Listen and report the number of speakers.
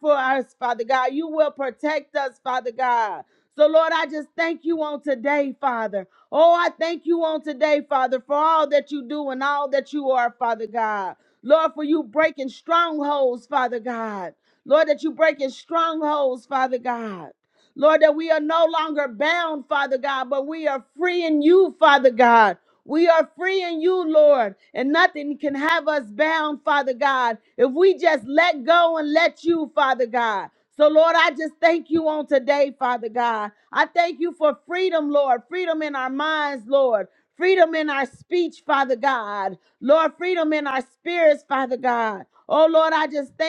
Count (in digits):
1